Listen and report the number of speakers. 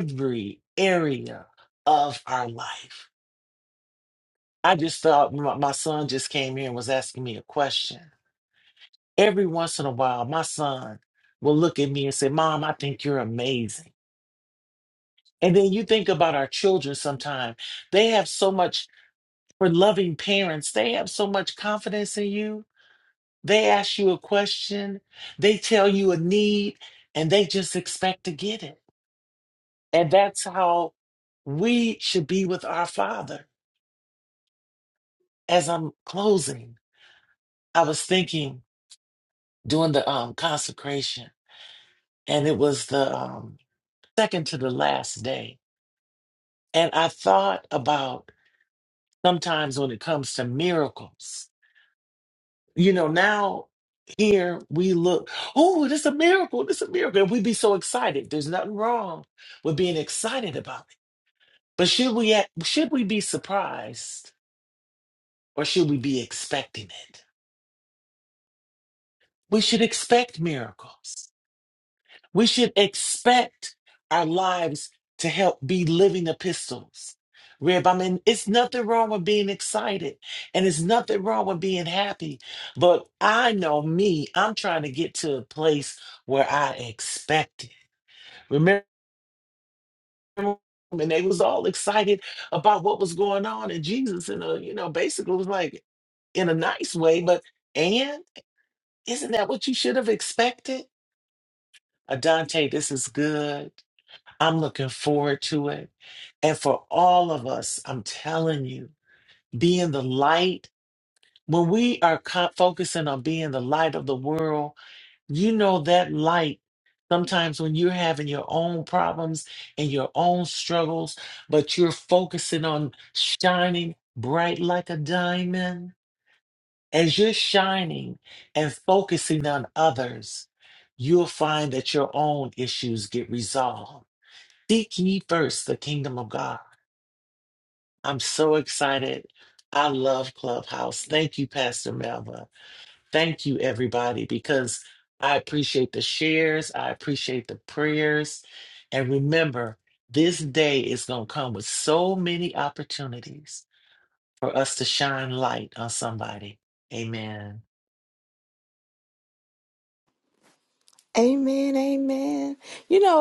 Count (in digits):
2